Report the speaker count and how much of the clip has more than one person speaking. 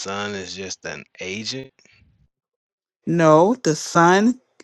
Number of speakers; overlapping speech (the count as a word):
two, no overlap